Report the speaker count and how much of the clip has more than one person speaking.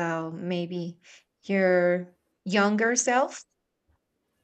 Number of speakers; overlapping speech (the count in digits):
1, no overlap